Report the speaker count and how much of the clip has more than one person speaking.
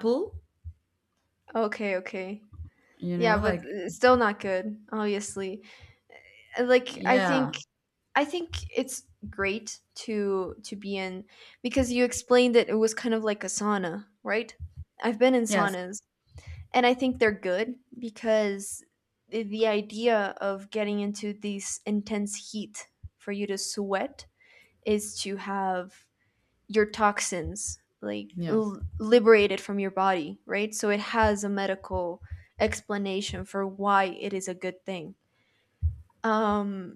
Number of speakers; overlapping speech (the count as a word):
two, about 4%